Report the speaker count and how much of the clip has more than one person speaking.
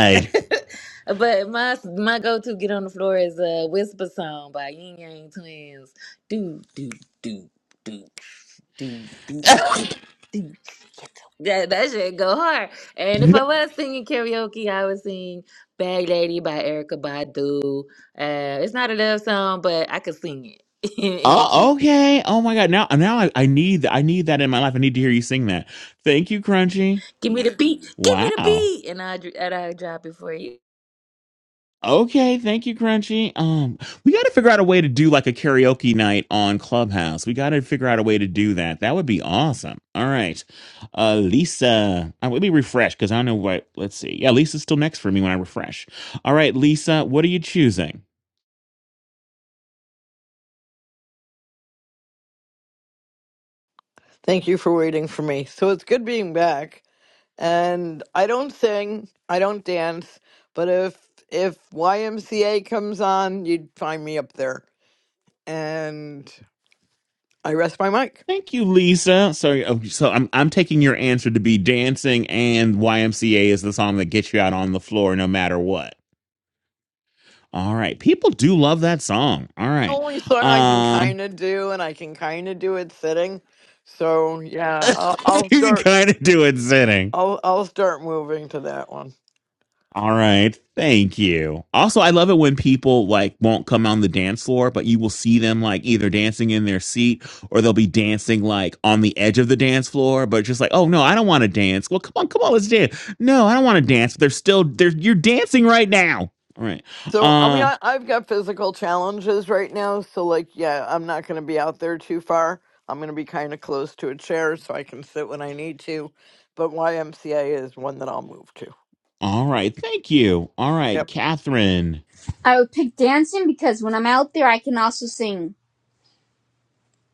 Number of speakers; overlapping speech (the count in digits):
4, about 2%